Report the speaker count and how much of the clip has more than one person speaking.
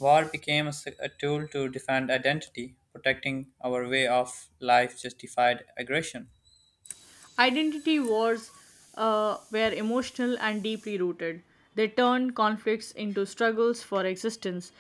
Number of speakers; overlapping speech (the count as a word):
two, no overlap